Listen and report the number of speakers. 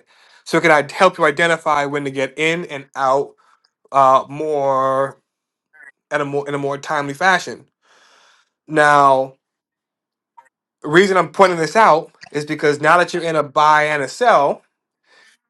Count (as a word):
one